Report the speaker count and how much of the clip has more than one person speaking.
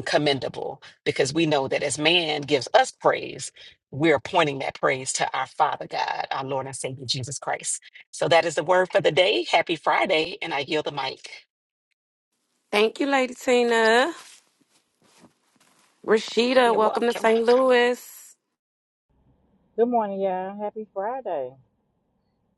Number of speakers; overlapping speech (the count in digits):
3, about 3%